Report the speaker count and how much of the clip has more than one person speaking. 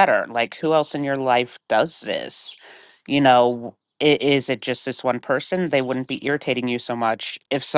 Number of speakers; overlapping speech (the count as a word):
one, no overlap